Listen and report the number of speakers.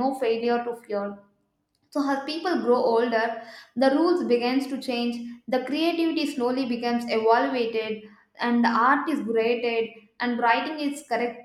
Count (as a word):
one